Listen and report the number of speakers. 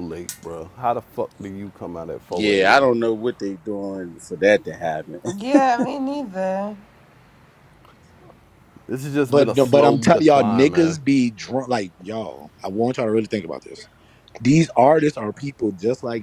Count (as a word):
four